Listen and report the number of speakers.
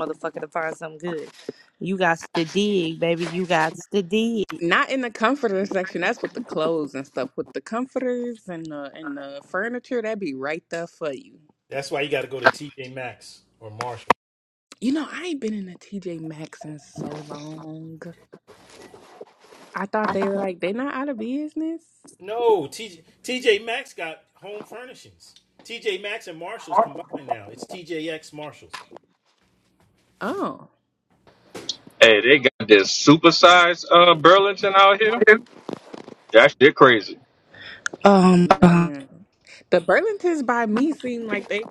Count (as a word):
four